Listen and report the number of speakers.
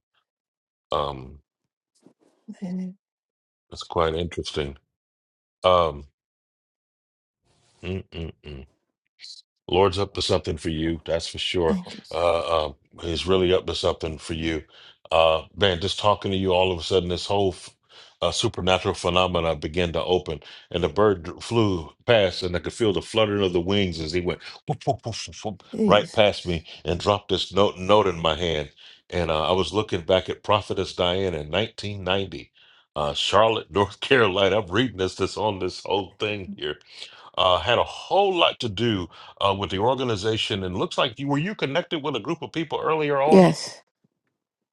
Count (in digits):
2